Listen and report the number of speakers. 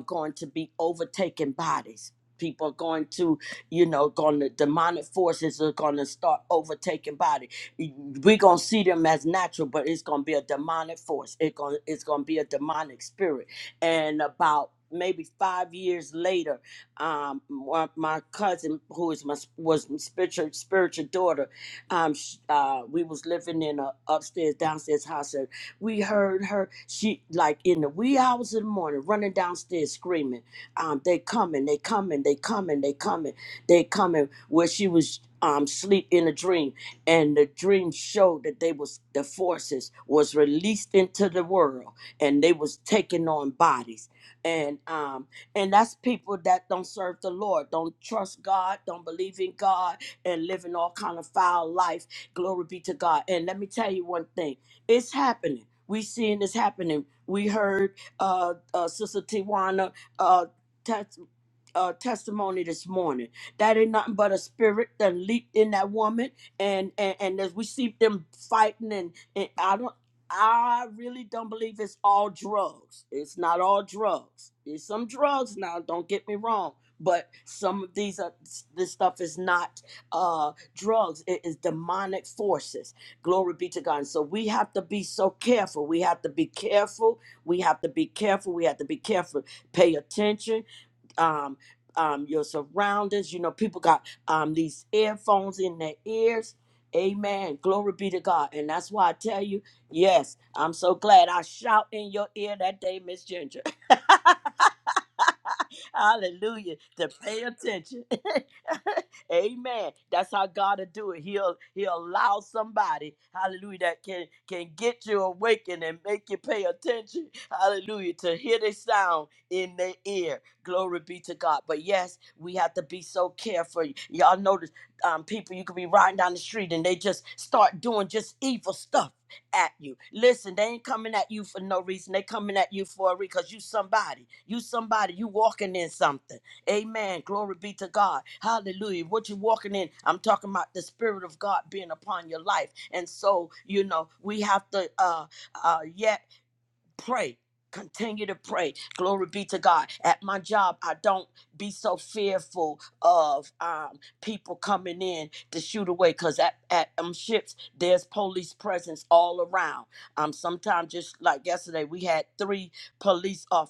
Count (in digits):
1